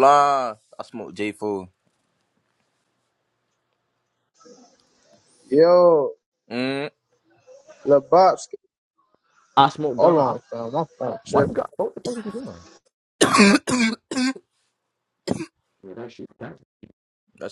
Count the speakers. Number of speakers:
three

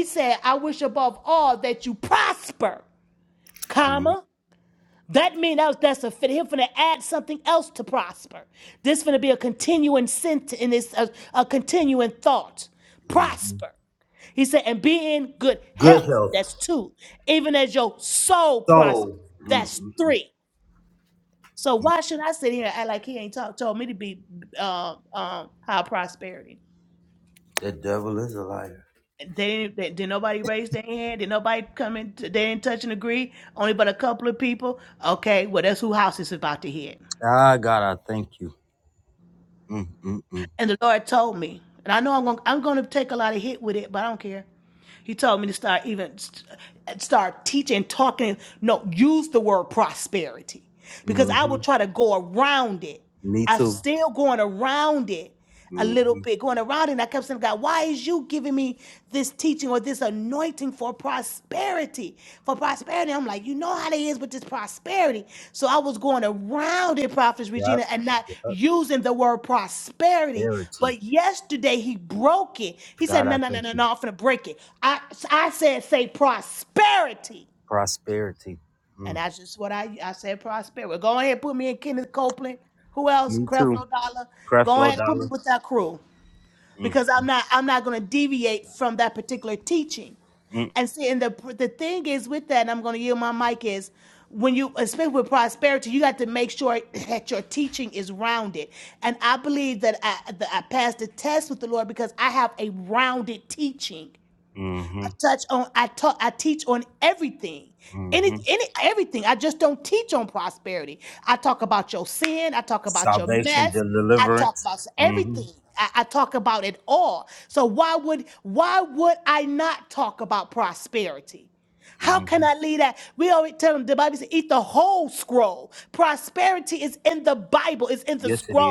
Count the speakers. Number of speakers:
two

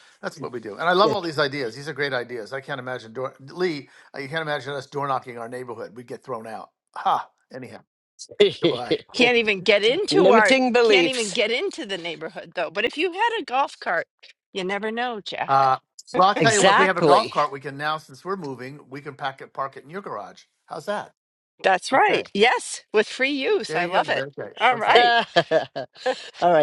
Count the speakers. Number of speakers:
three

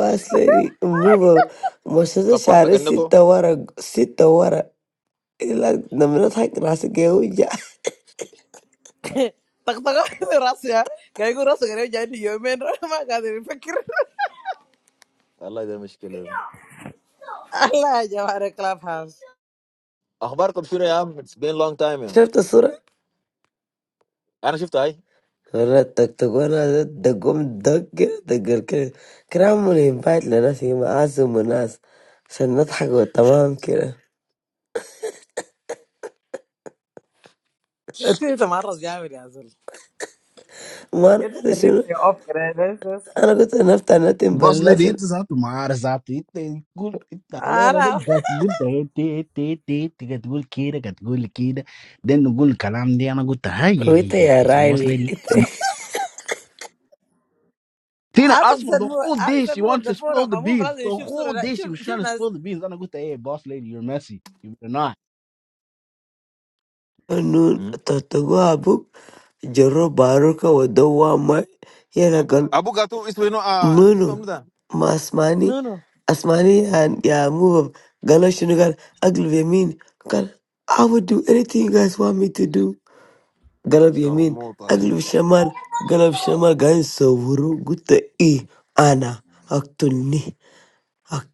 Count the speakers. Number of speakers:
four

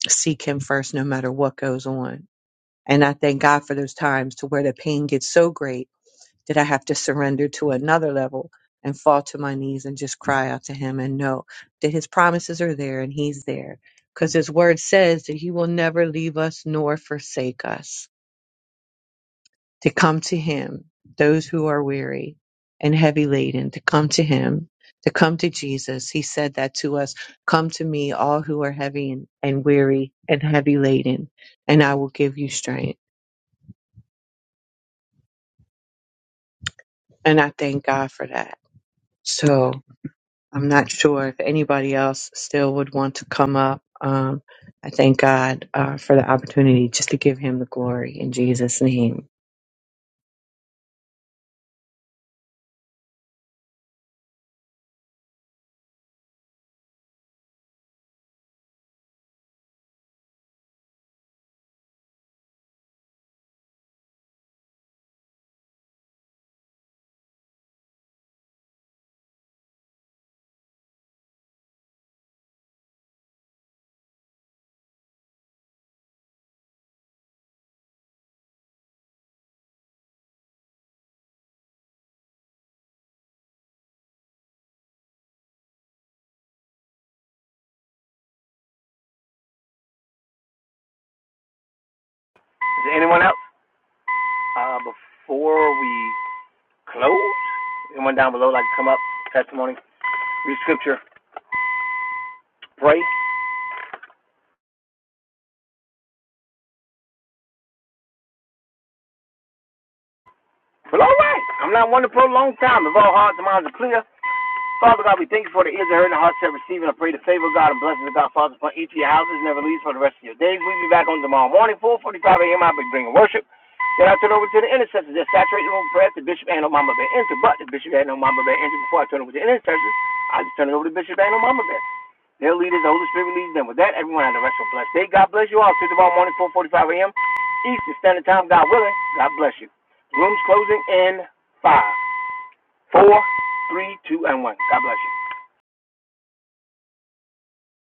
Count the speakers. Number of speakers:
two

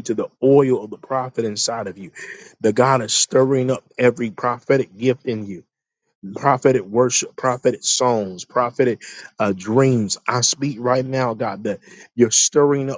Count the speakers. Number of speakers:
one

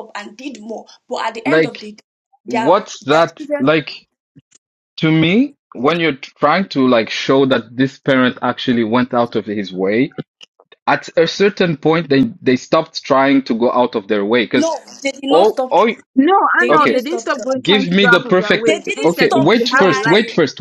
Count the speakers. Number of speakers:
three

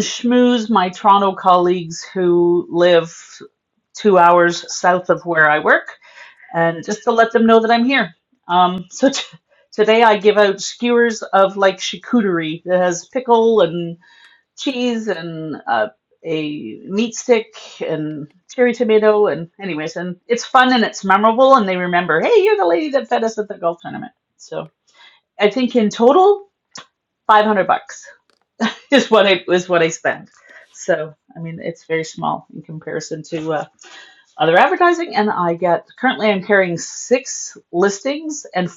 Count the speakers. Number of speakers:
one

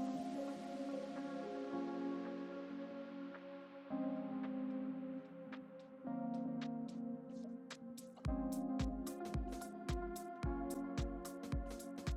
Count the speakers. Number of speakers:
zero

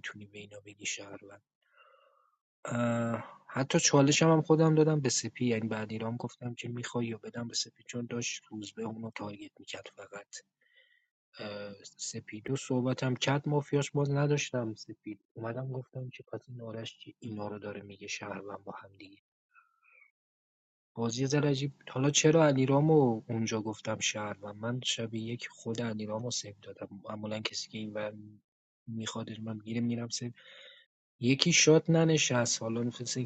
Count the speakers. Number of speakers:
one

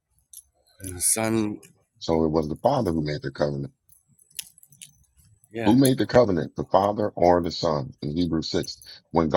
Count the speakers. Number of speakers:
two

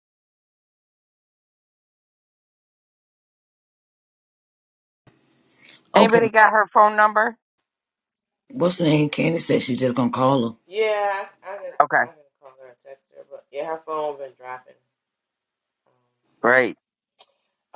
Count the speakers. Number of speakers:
three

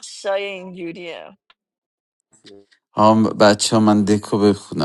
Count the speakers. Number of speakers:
two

